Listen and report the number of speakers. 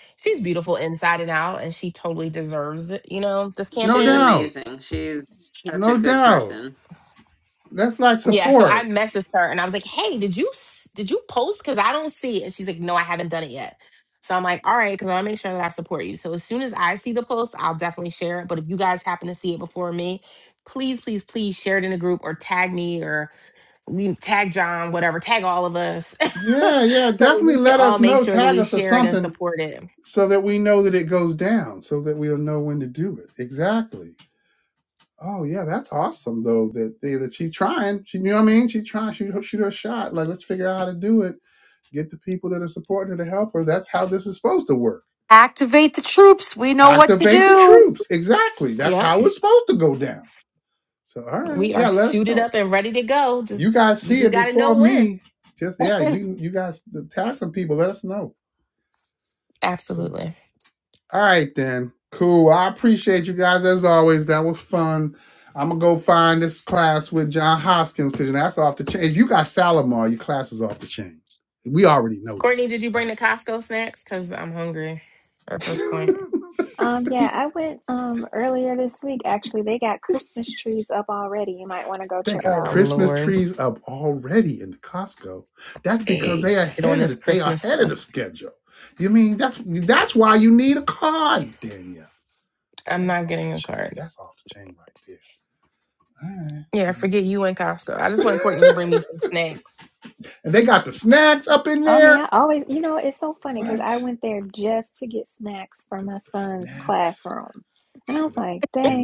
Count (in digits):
5